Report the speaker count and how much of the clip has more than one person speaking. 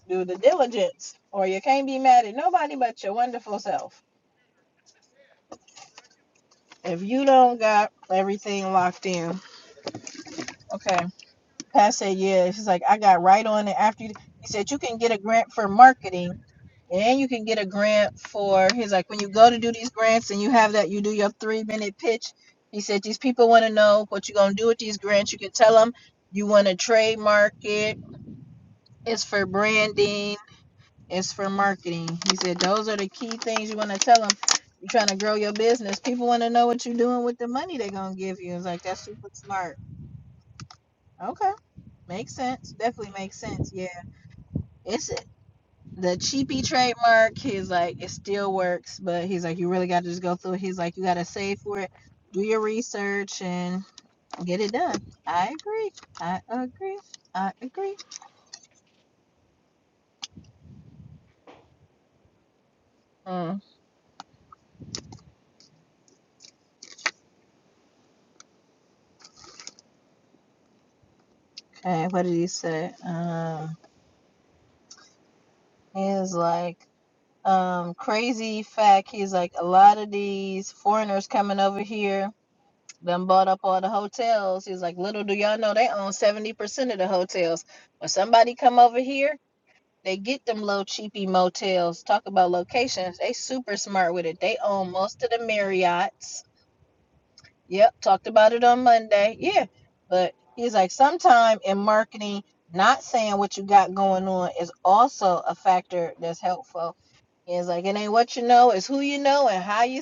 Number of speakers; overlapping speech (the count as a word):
one, no overlap